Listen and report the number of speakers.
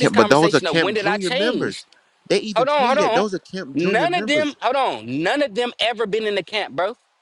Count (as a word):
two